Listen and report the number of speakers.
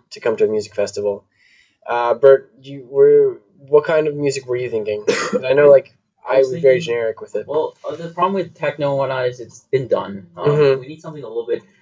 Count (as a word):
two